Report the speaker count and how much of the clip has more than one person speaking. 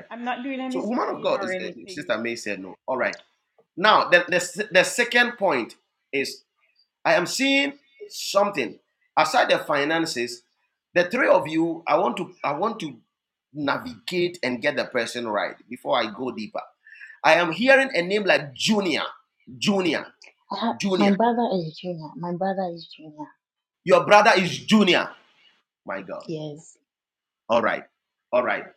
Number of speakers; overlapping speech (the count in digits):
3, about 6%